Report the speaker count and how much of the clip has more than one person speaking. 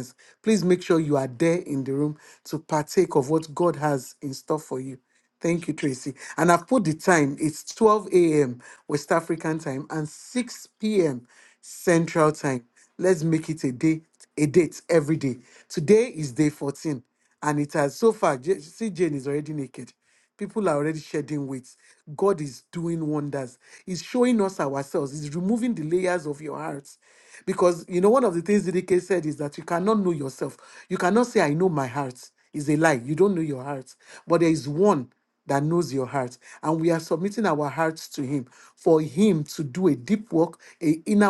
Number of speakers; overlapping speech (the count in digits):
1, no overlap